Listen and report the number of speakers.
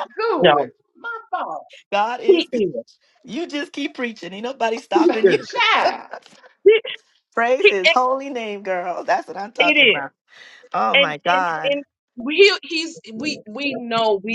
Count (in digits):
3